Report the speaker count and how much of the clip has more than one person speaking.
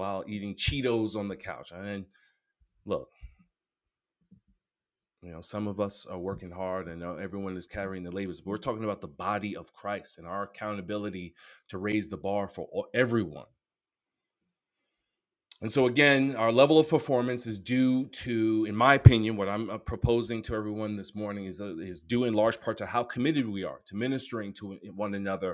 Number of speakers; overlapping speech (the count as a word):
one, no overlap